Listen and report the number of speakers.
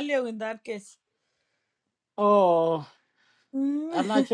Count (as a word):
two